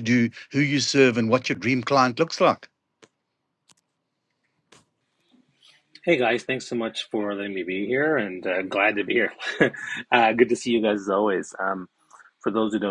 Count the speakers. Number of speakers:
2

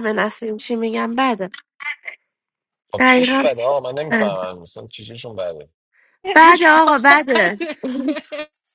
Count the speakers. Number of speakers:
3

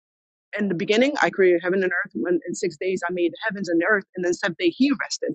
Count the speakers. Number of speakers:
1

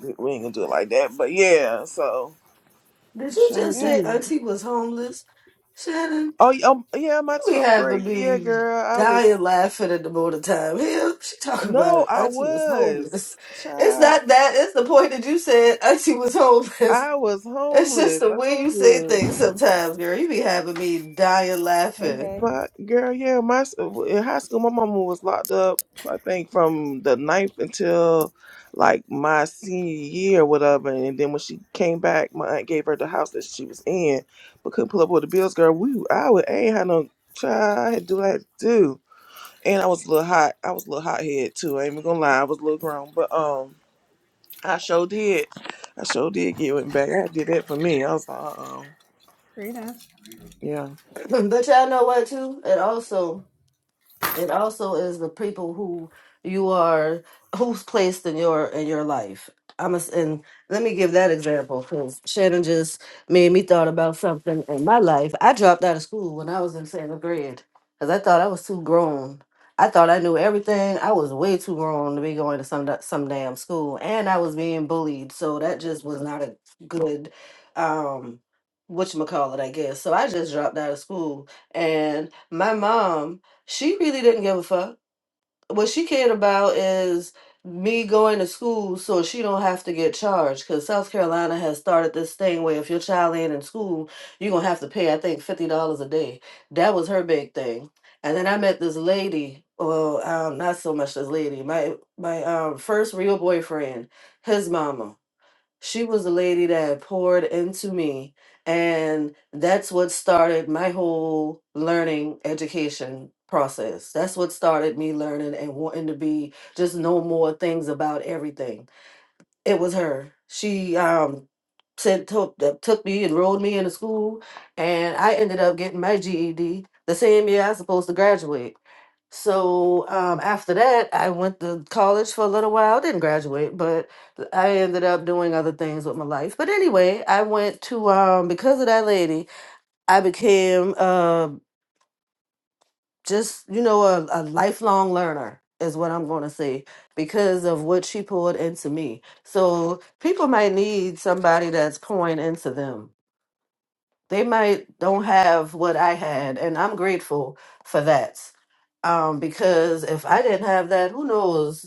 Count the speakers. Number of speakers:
3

